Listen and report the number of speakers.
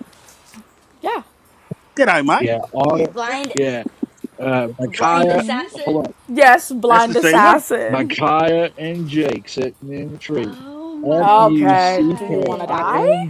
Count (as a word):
four